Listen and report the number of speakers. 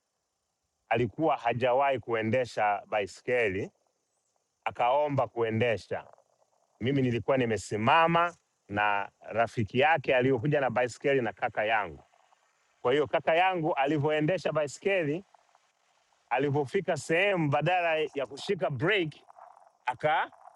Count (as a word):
one